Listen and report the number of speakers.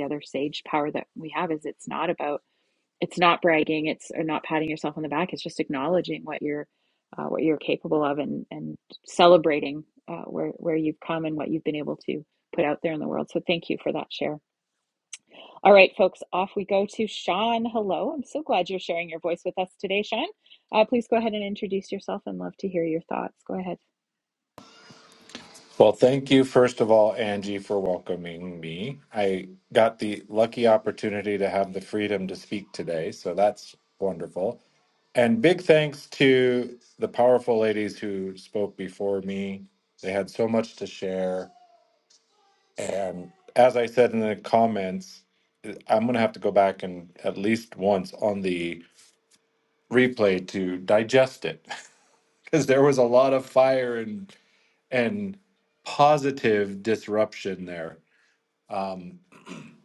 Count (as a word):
two